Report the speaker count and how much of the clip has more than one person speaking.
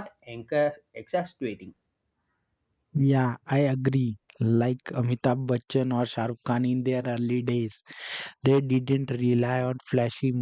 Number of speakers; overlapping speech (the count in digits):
2, no overlap